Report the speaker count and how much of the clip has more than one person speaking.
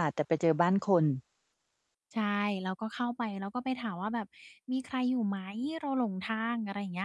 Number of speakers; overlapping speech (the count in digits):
2, no overlap